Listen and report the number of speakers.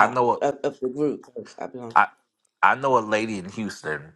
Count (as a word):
two